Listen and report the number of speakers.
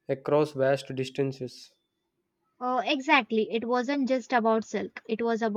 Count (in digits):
2